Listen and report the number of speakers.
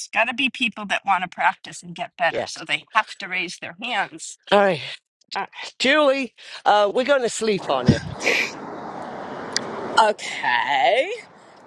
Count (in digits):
3